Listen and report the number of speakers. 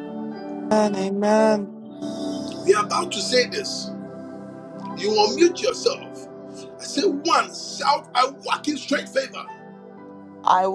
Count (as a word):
two